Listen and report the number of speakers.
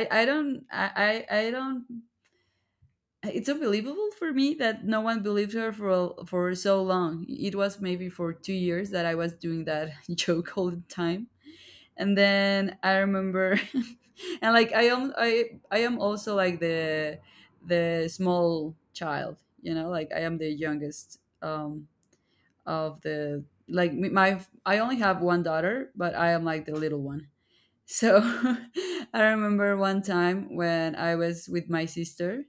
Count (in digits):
1